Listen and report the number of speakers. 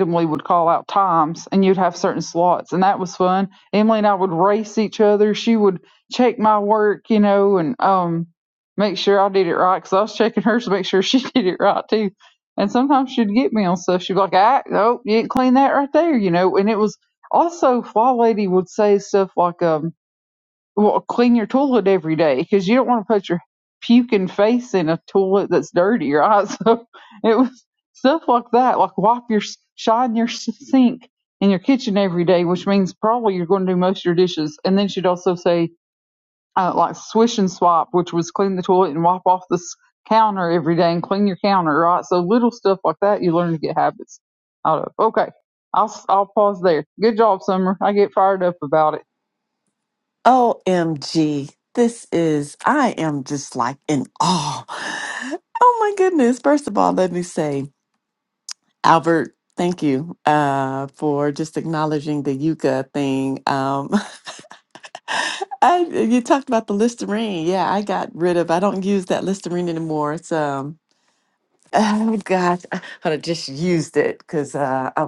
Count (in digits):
2